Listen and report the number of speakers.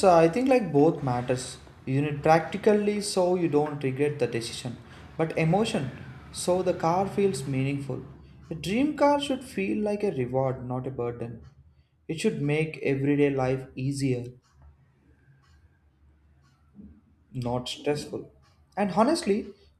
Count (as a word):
one